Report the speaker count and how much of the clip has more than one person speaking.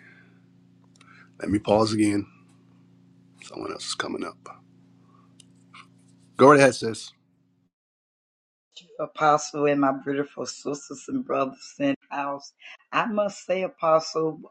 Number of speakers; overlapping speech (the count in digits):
2, no overlap